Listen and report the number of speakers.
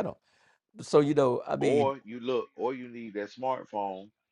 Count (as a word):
two